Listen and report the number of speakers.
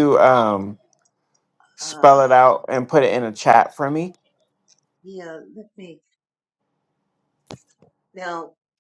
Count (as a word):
two